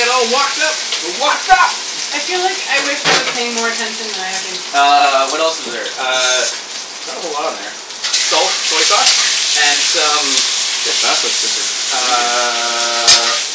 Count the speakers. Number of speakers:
3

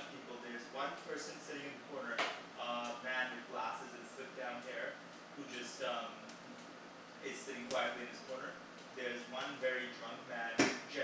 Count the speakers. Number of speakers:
1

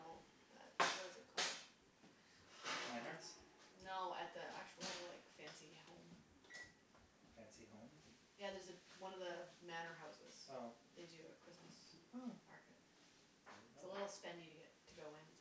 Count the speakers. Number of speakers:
2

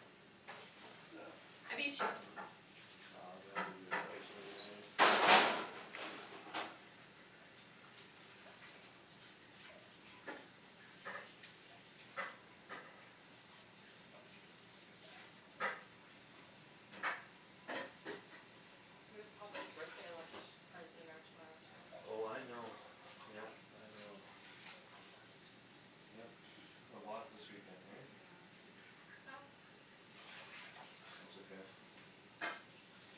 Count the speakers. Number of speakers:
2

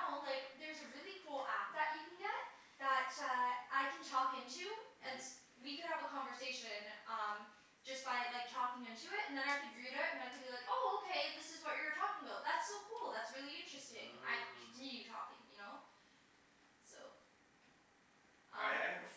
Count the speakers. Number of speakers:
2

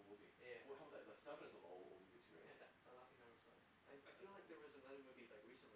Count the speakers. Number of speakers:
3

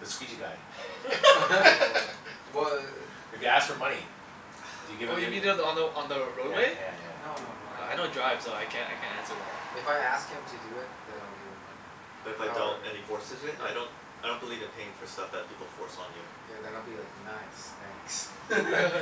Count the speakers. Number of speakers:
4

